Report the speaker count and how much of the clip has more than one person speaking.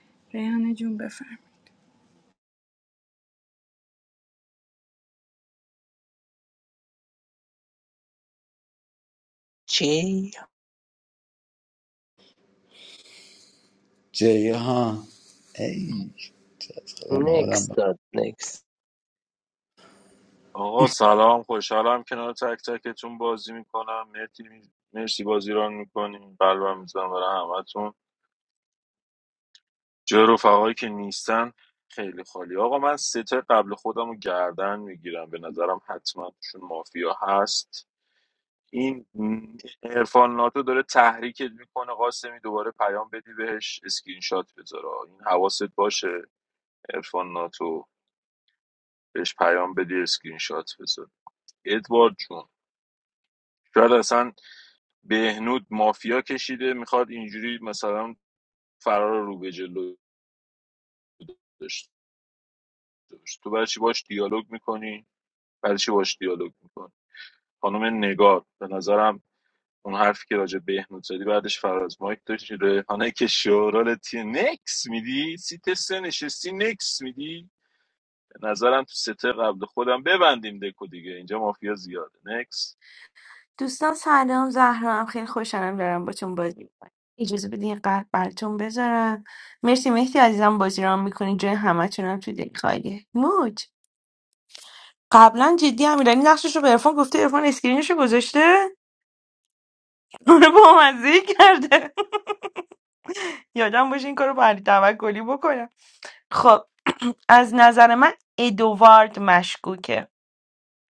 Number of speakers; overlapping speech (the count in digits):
5, about 1%